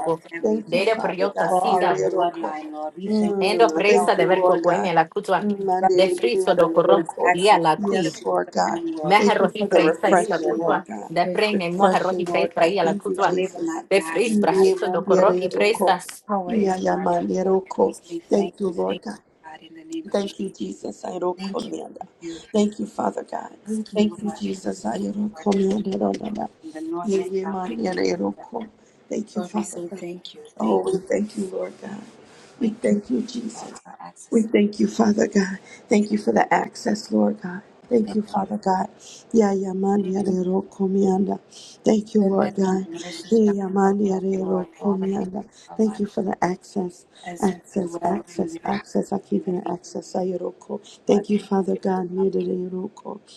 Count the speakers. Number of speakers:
three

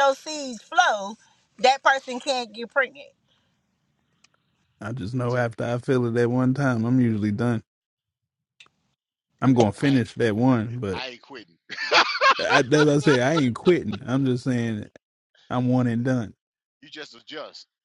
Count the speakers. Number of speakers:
three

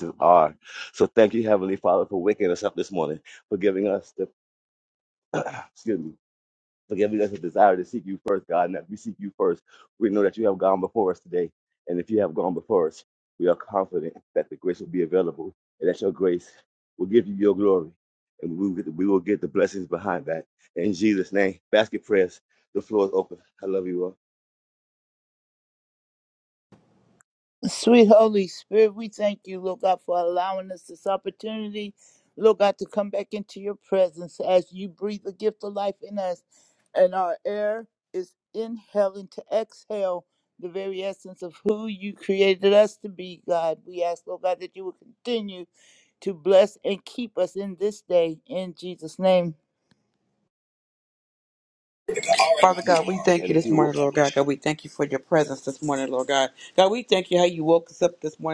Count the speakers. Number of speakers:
three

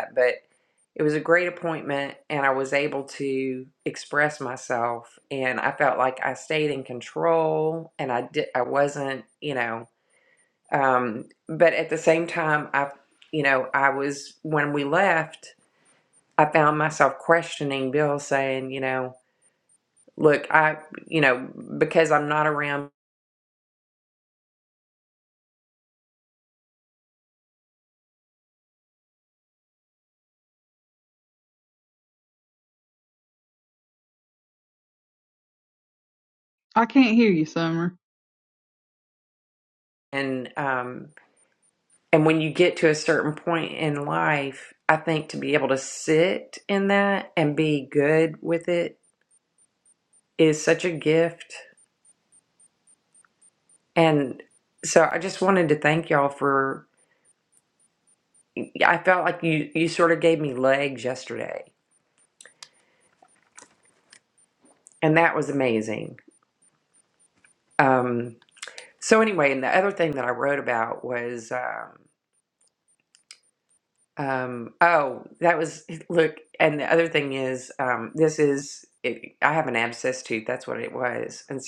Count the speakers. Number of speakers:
two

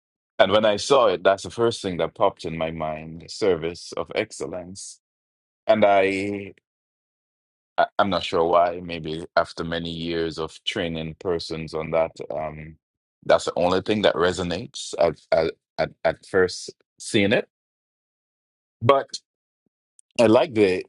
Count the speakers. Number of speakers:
one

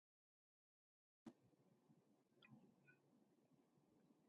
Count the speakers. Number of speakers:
zero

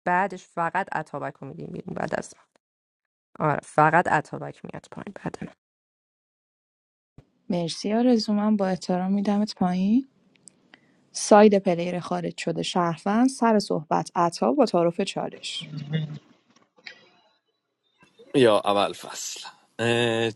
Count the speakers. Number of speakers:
three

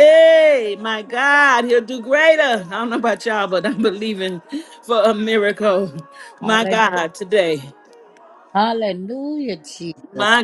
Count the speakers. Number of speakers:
two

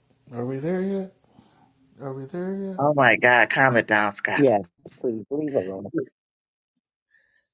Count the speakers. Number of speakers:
three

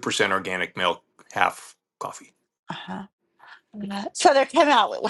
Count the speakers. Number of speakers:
two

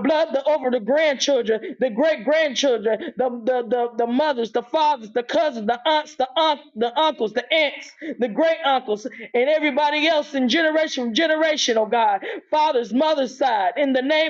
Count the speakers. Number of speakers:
one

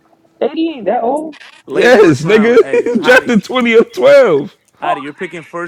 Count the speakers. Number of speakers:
three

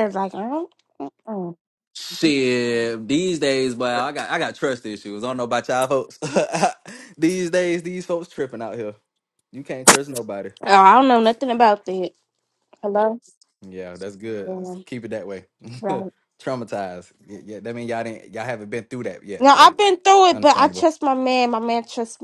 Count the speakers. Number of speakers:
two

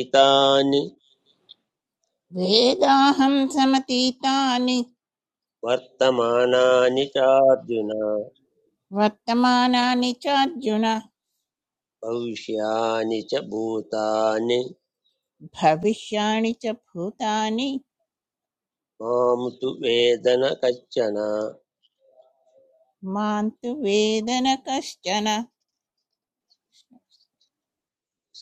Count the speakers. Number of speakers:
two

